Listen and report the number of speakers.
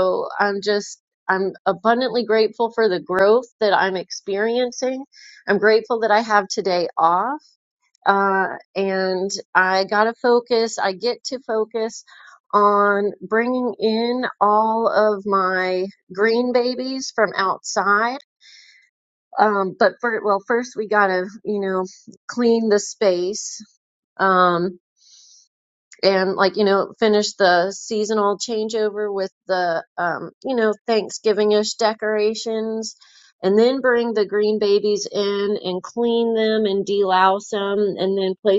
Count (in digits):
1